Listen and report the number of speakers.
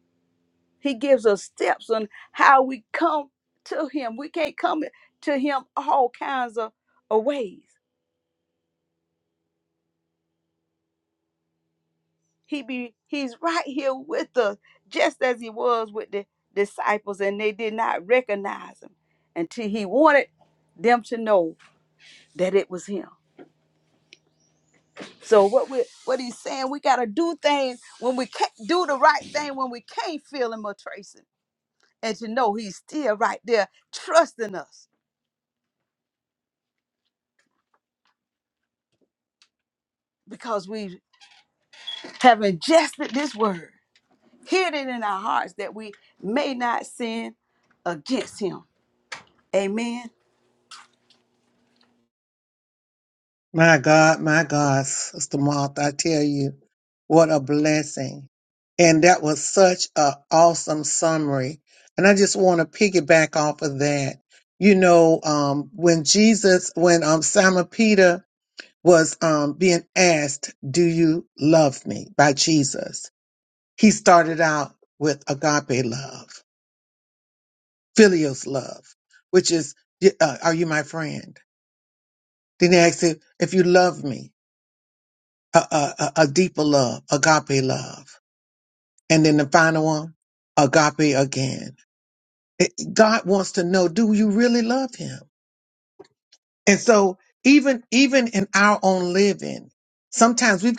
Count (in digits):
2